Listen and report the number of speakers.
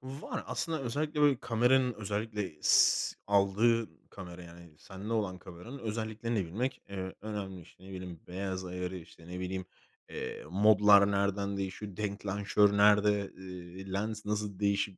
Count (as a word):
one